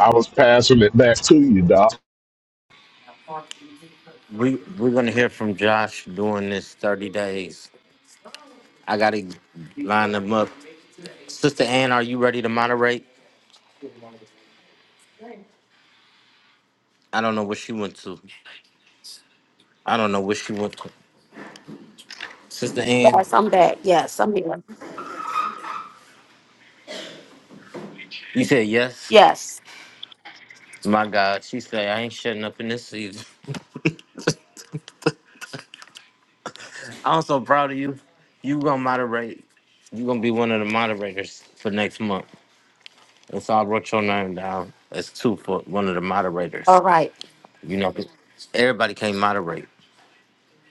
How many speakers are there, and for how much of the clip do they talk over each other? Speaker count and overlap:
three, about 1%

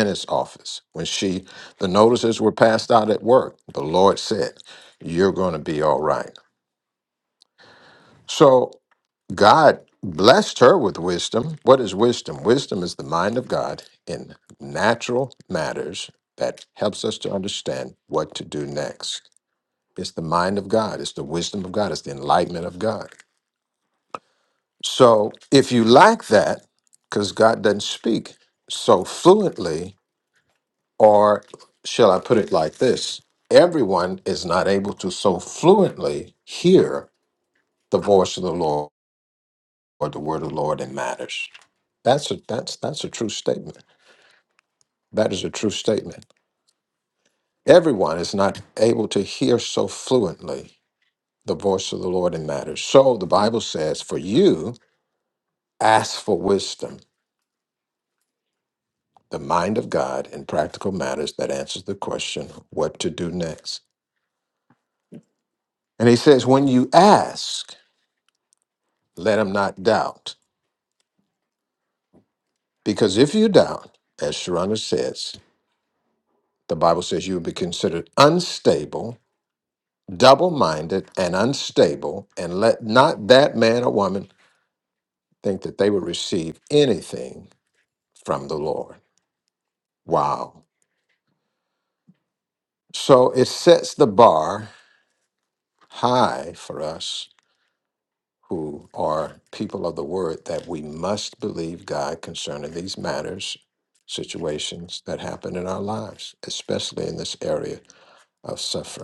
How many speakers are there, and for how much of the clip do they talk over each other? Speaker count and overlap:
one, no overlap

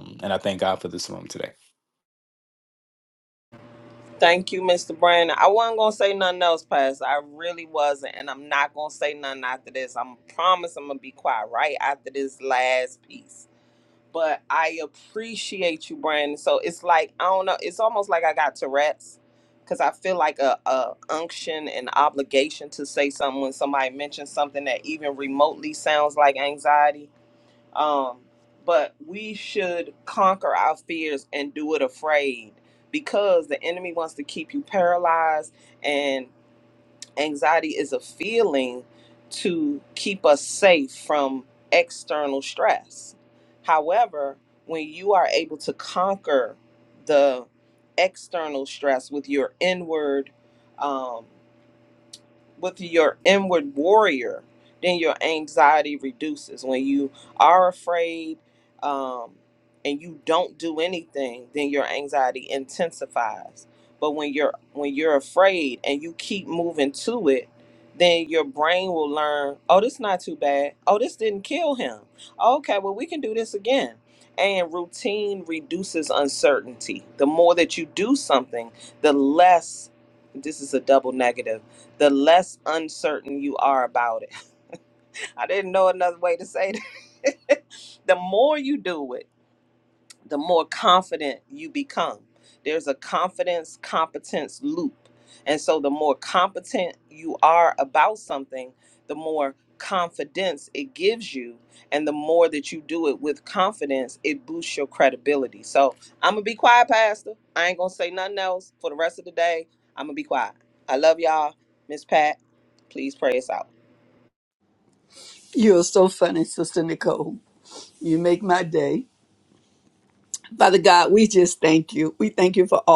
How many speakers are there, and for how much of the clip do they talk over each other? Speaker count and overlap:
three, no overlap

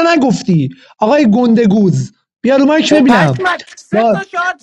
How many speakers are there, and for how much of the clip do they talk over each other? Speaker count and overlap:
two, about 16%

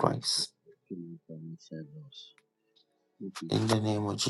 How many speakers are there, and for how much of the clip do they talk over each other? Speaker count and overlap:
two, about 12%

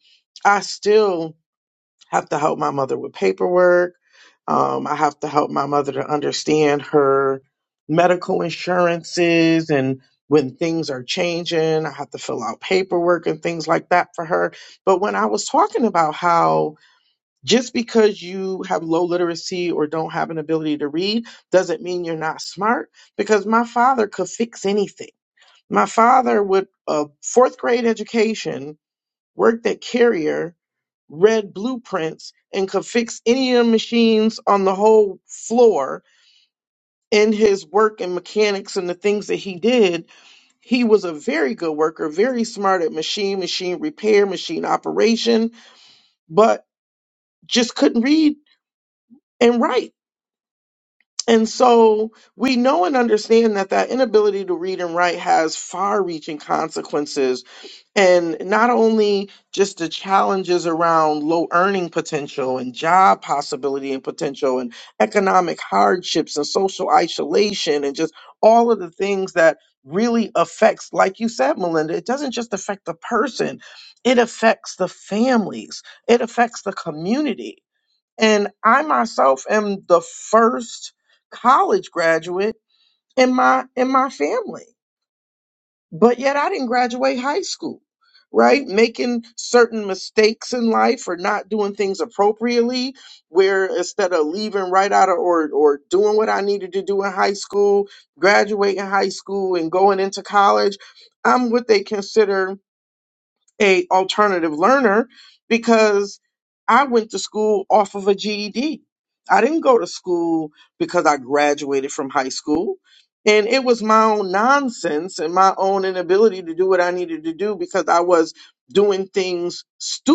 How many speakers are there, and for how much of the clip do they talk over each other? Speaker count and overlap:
one, no overlap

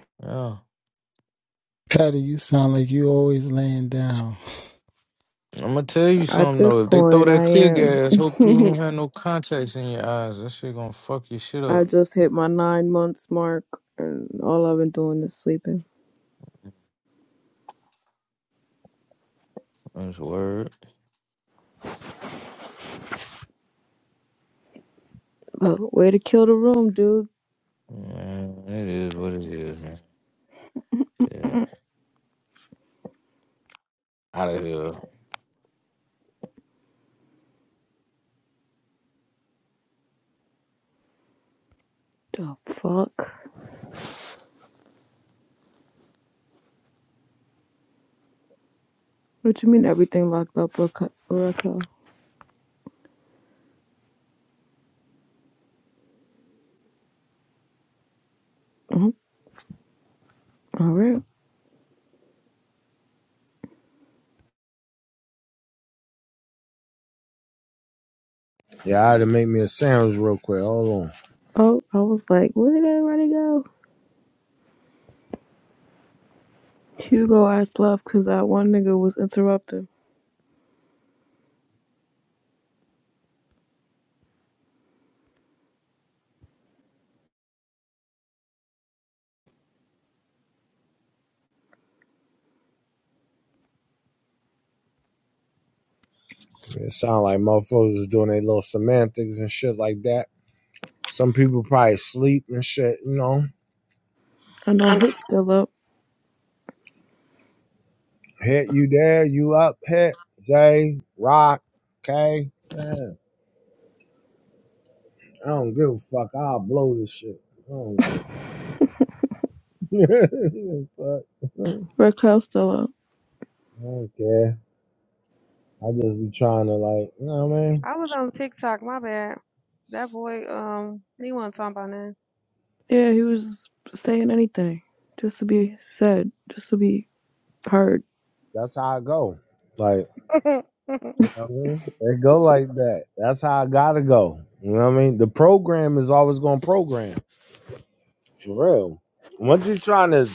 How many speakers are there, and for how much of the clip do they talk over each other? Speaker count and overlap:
five, about 1%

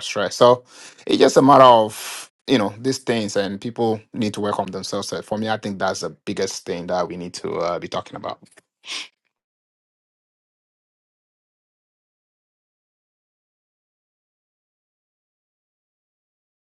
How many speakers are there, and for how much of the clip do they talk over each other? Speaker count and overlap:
one, no overlap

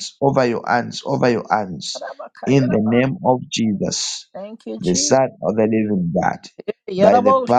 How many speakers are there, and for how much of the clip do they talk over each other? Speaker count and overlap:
two, about 18%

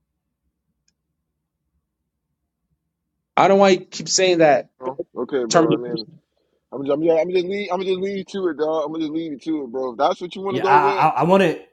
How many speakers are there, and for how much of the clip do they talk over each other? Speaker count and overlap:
three, about 9%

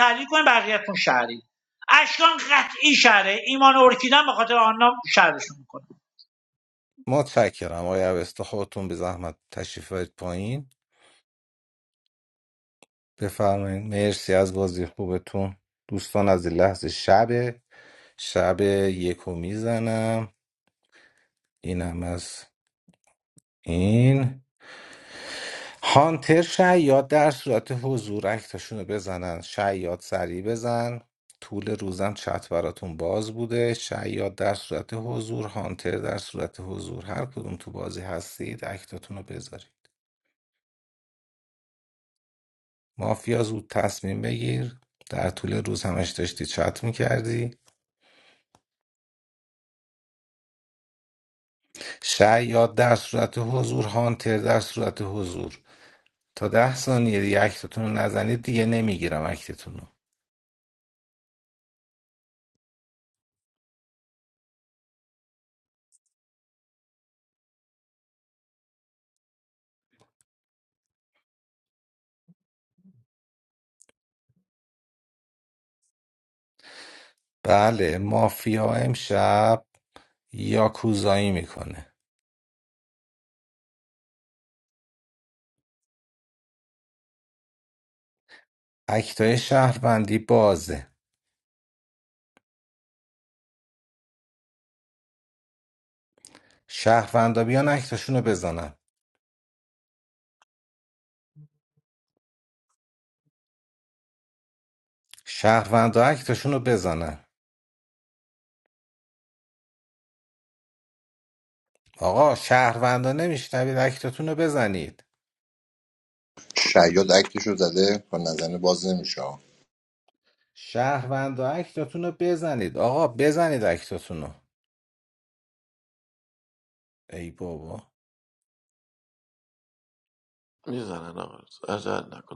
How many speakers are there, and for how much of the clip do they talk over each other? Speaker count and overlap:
four, no overlap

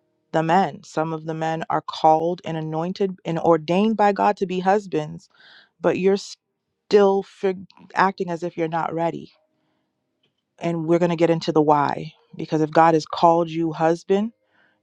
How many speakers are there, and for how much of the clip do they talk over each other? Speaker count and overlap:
one, no overlap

